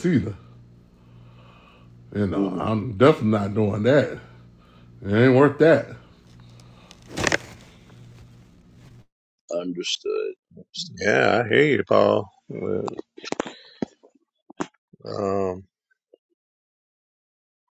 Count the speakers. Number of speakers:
three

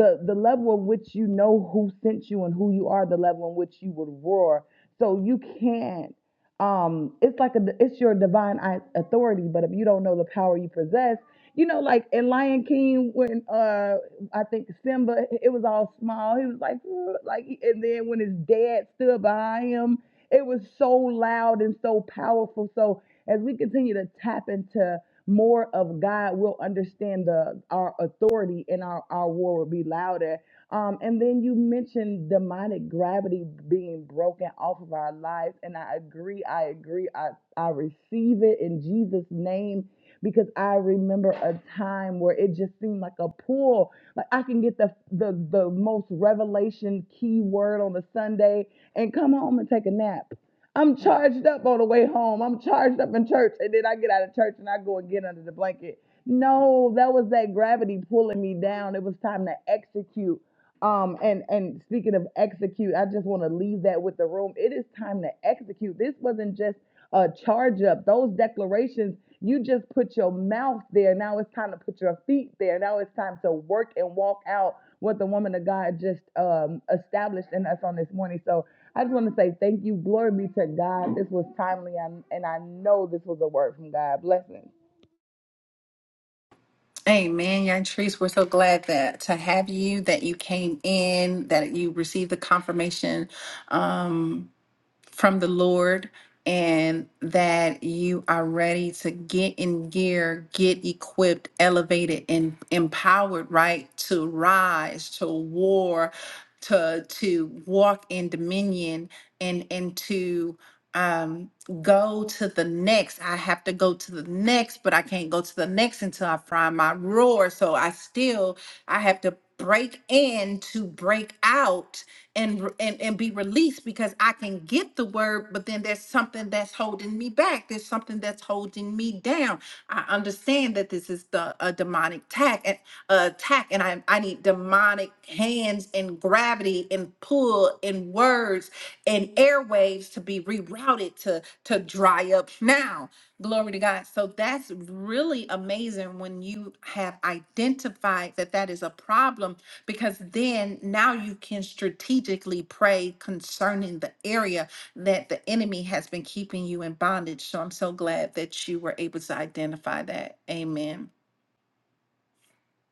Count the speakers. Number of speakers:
two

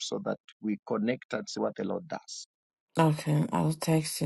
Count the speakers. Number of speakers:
two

